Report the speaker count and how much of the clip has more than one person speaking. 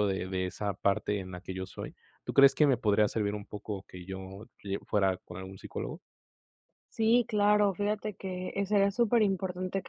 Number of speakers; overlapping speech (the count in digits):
2, no overlap